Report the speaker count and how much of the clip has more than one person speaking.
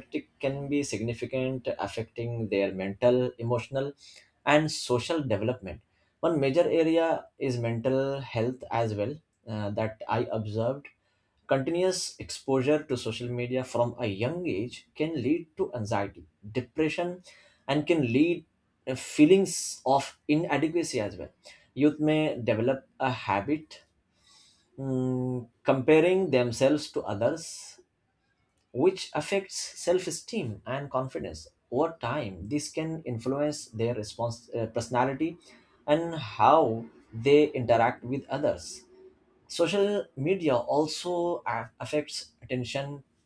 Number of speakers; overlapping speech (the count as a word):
one, no overlap